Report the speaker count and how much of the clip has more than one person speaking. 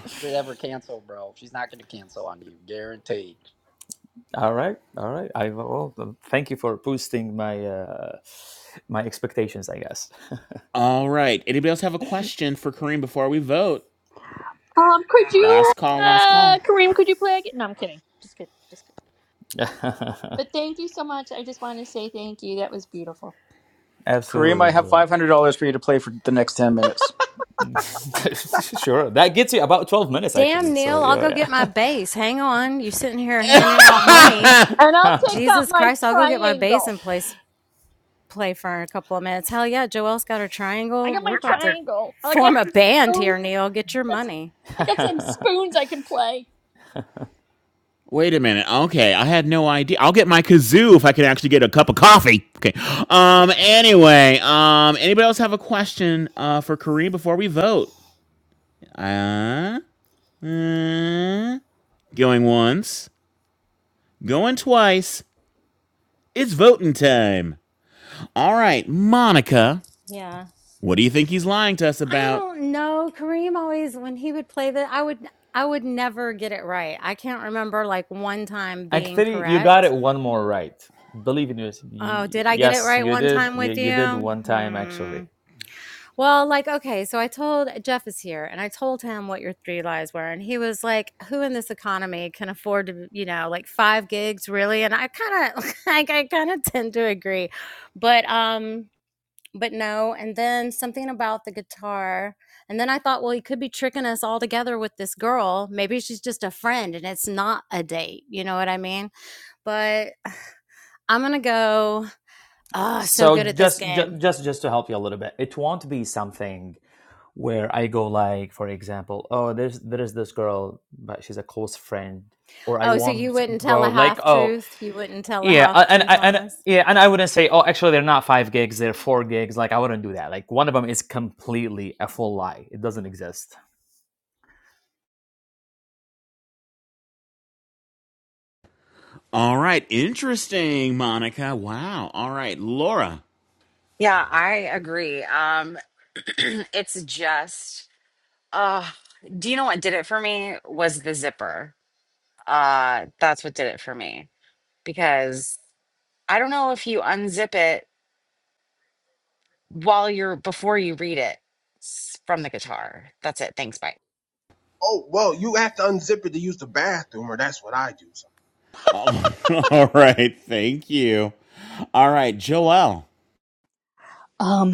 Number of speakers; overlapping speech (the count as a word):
eight, about 8%